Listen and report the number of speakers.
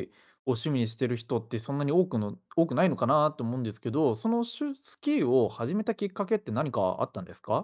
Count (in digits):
1